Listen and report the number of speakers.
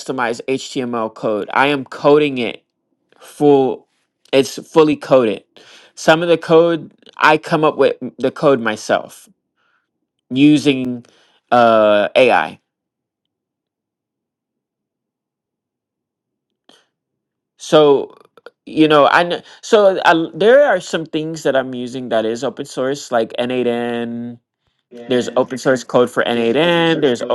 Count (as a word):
one